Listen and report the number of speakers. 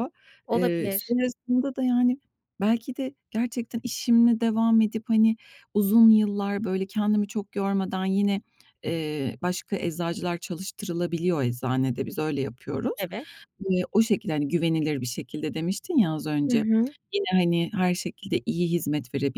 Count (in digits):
2